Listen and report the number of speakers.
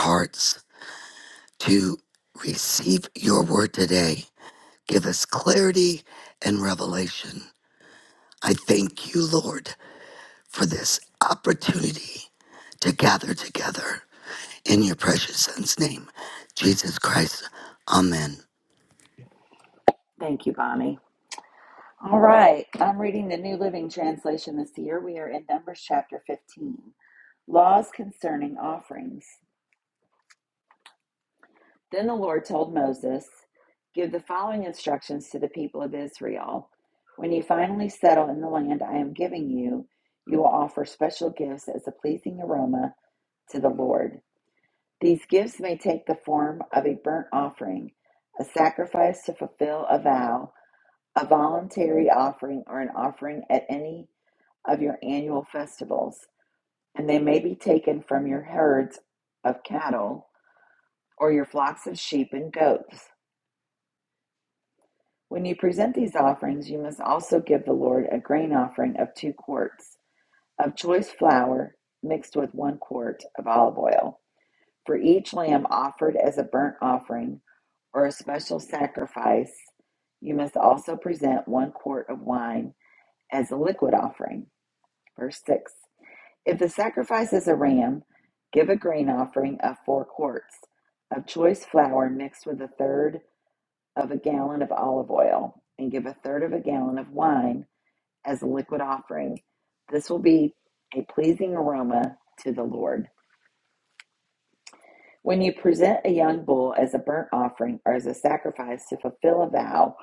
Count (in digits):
2